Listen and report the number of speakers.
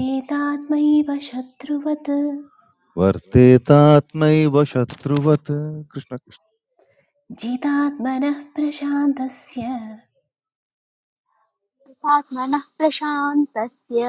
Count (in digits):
3